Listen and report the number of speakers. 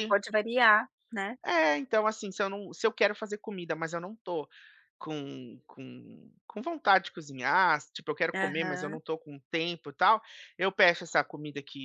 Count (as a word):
two